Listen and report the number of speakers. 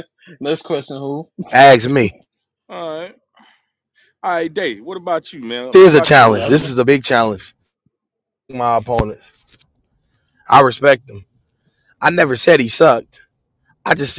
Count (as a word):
three